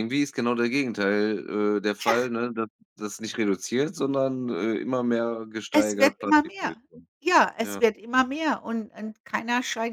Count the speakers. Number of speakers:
2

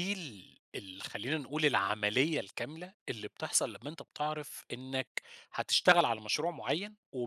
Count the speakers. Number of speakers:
1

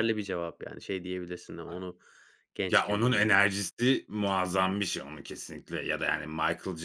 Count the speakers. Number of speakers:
2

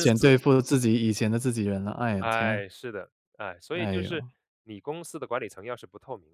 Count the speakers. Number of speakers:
2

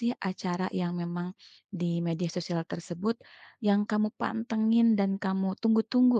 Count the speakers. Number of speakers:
1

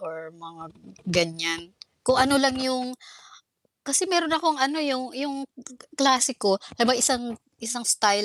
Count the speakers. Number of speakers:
1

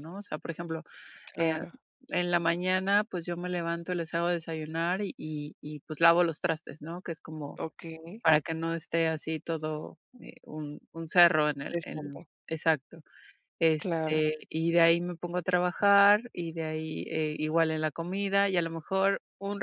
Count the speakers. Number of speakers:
2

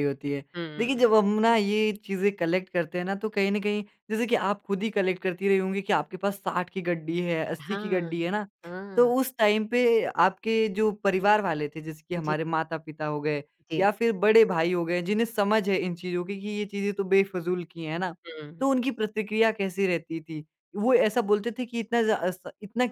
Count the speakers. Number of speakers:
2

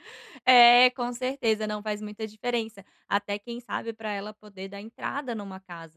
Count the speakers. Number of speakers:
1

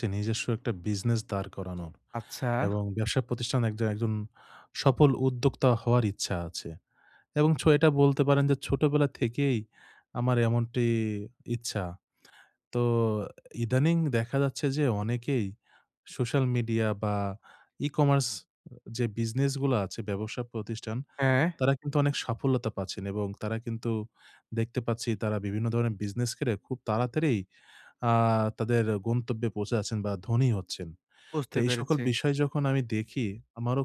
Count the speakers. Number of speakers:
2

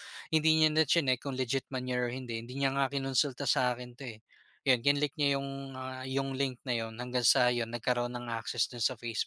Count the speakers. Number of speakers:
1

